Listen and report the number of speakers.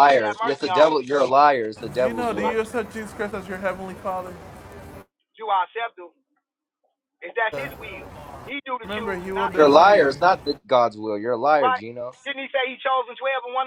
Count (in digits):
3